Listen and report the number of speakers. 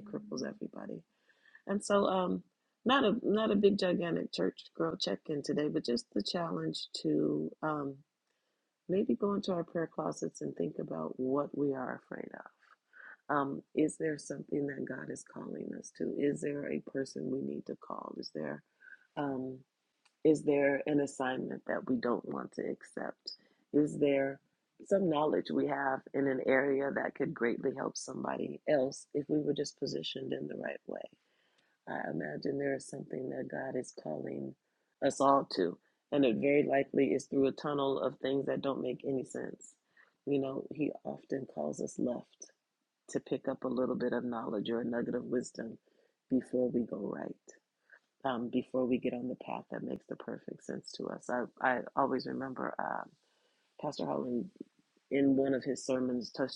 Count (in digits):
1